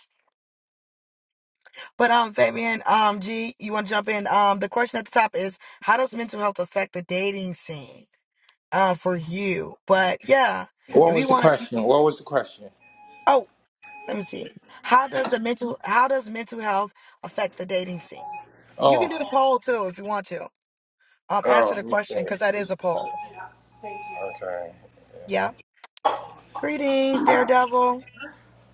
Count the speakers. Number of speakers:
two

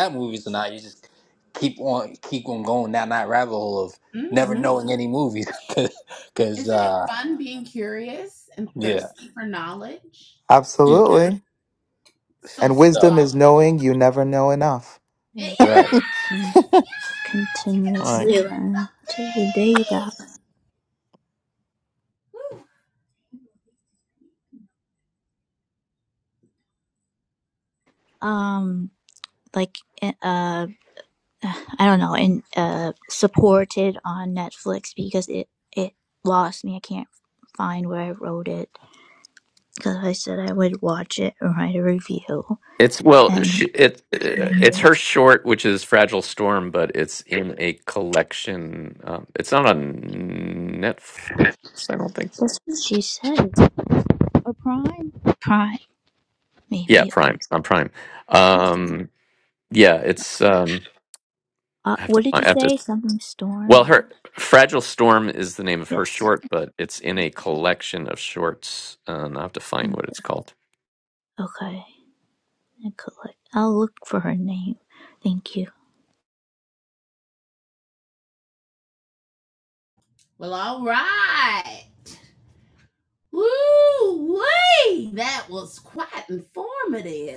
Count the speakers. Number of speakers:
five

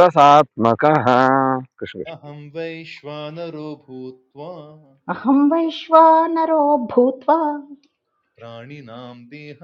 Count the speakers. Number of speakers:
three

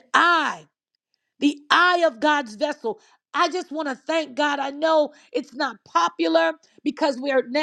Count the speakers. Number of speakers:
one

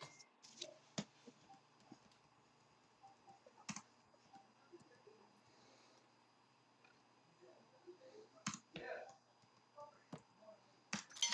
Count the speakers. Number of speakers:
zero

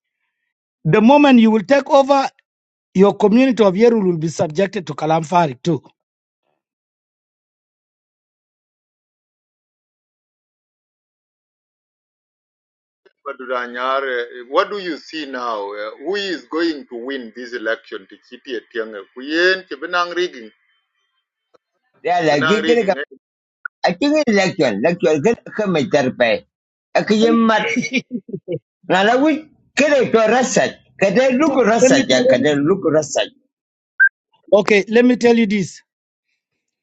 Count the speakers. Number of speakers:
three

